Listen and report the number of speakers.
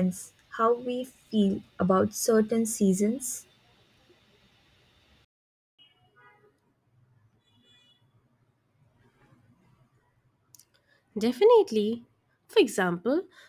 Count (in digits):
2